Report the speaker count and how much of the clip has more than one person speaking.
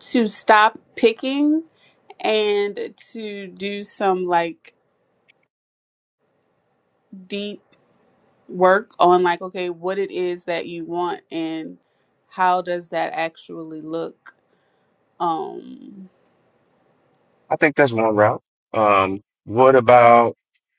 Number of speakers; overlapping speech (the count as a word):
two, no overlap